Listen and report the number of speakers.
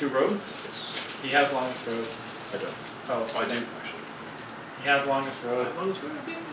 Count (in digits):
2